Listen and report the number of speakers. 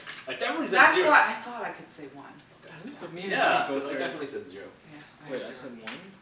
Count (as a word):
three